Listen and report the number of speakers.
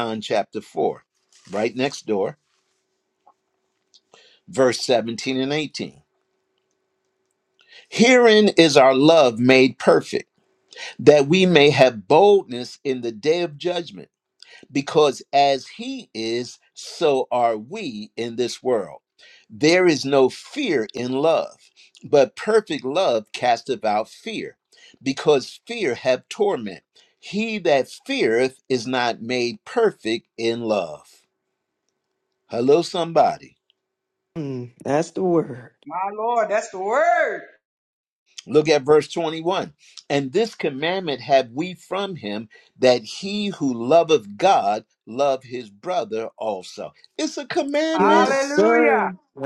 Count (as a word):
three